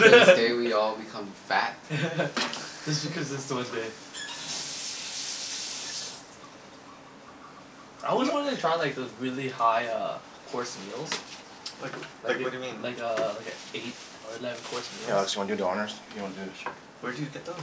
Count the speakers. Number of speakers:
4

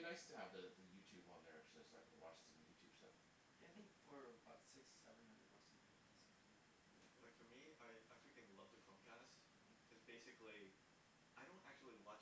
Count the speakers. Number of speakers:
3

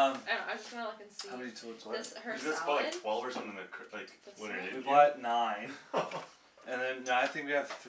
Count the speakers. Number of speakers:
3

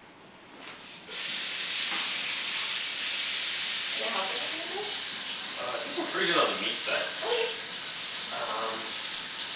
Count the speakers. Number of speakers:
2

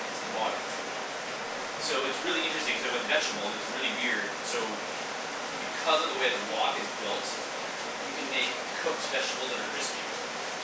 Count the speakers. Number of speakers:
1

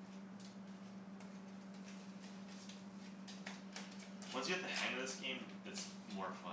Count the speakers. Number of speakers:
1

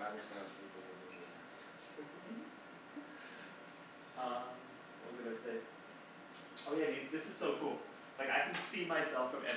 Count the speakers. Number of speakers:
2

